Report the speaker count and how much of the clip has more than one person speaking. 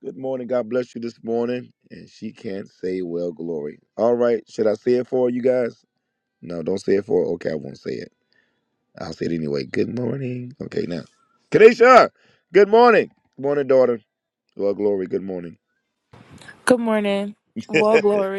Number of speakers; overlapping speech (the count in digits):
2, about 3%